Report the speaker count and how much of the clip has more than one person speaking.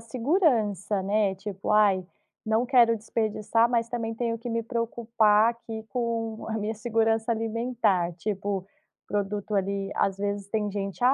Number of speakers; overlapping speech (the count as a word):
one, no overlap